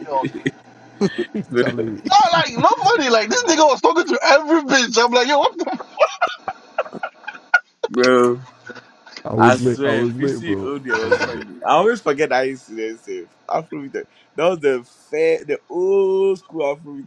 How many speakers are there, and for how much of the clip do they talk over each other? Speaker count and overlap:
3, about 13%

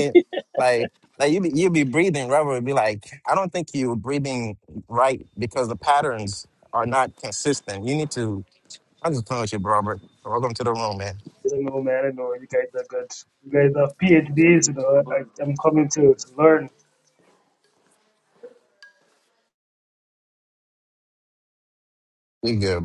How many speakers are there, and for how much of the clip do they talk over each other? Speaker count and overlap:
2, no overlap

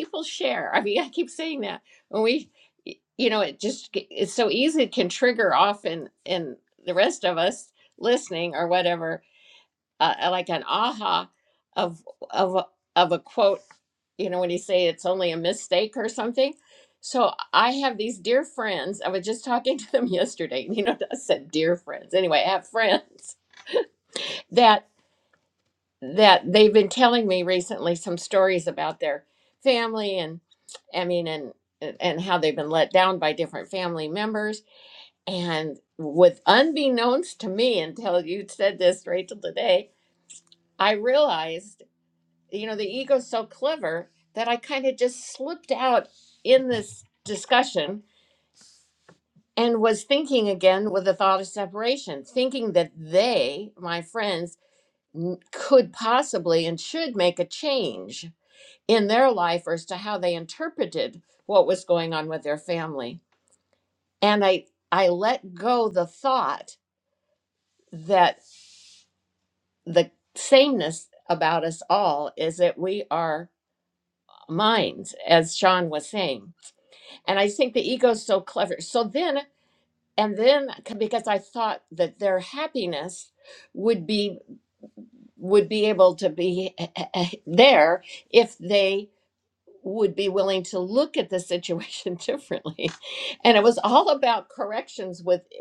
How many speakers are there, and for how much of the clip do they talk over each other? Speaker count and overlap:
1, no overlap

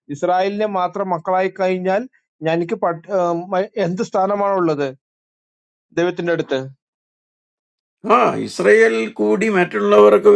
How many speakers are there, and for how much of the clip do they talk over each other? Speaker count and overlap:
2, no overlap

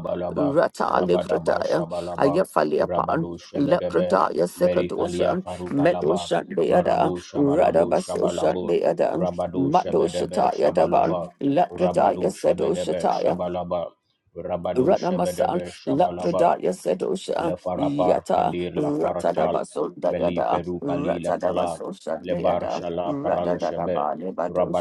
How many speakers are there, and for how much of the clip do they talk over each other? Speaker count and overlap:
2, about 64%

